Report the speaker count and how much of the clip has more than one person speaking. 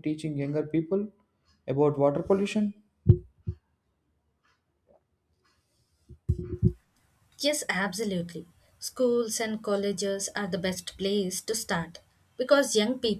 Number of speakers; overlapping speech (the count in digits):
2, no overlap